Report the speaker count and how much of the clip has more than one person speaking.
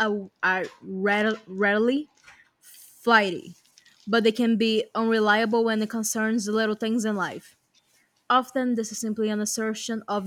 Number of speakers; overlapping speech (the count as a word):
one, no overlap